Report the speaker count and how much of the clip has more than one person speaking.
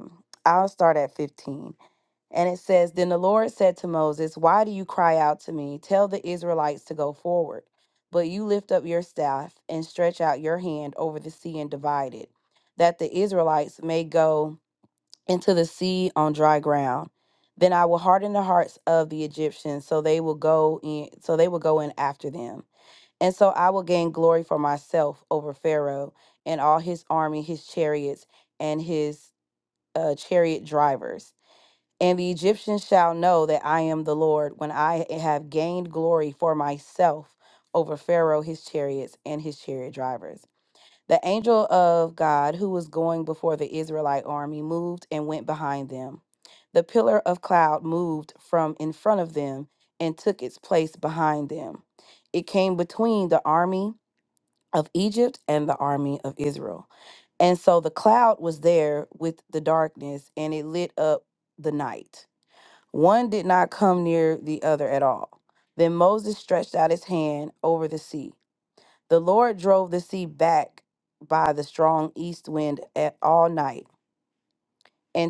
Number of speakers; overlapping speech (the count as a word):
one, no overlap